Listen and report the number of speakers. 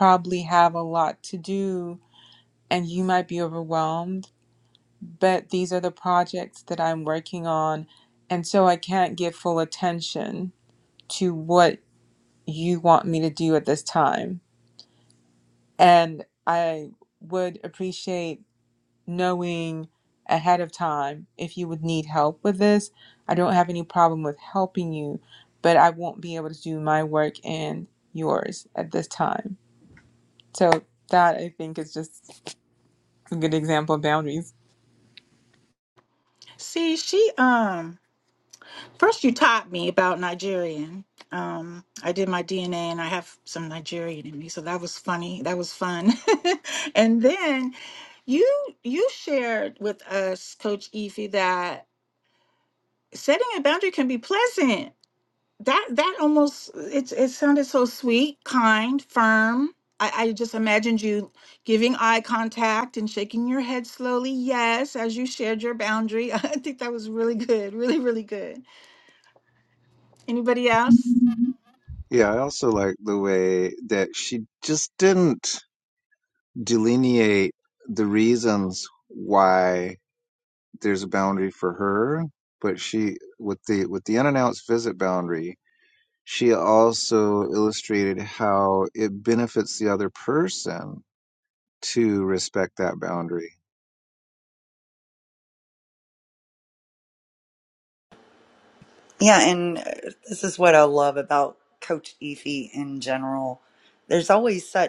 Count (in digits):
4